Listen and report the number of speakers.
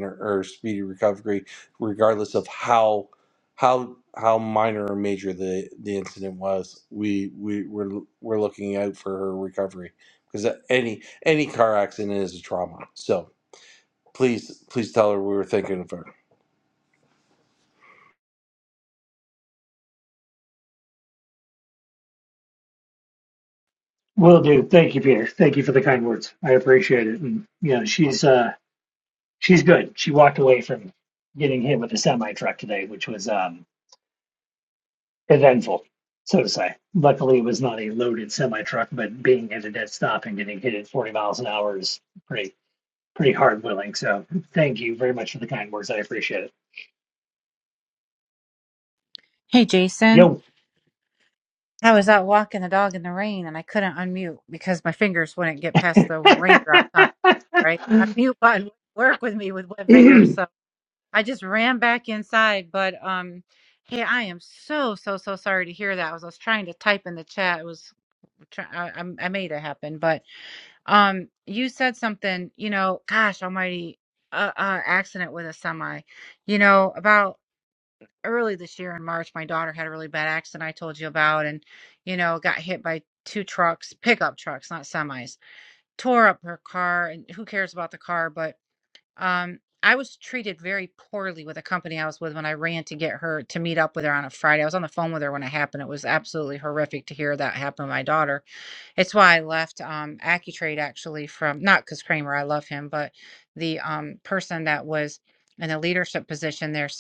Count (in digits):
3